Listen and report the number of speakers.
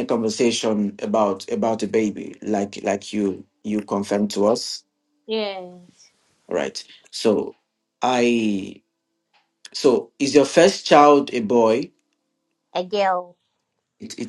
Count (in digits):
2